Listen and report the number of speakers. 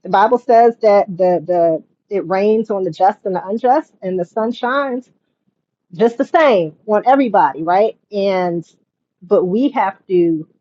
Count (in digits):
1